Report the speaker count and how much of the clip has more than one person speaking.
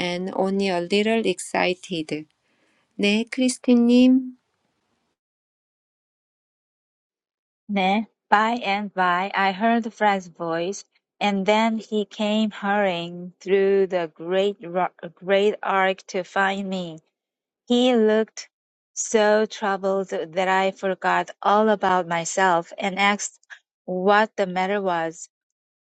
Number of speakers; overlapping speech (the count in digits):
2, no overlap